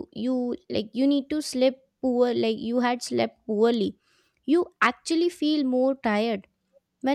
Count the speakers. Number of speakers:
1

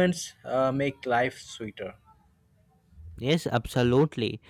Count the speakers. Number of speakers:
2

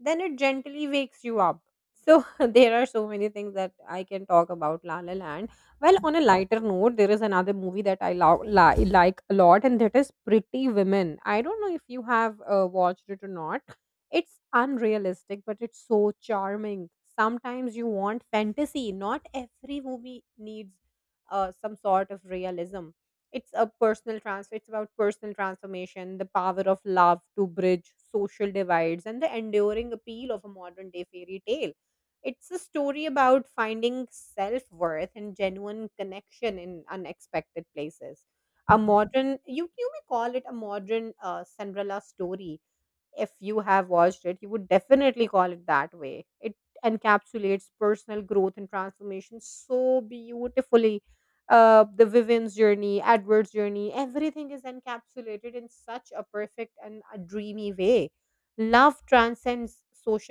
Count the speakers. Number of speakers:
1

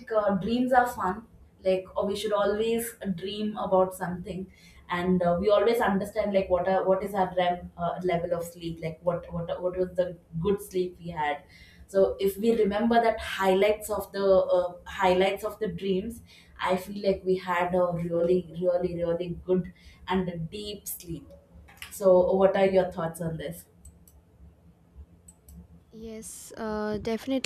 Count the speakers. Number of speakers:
2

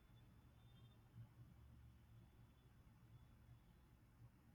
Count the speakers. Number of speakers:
0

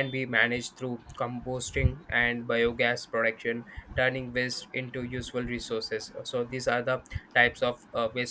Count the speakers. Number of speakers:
1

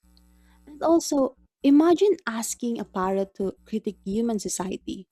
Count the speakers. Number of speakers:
1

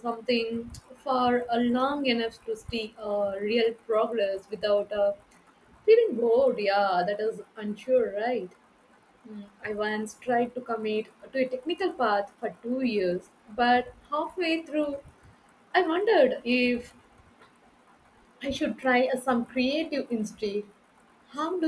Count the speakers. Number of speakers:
1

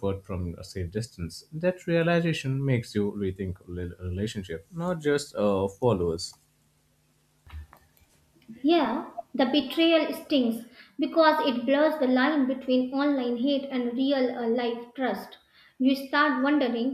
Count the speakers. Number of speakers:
2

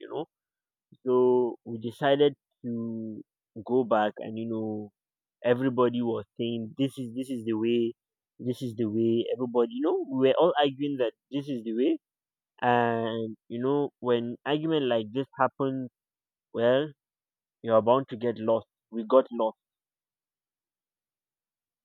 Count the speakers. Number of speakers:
1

